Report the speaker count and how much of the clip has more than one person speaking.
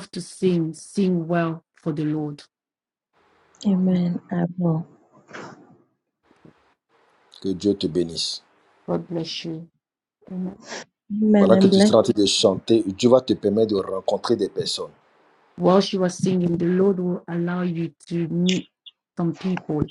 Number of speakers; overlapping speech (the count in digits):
3, about 3%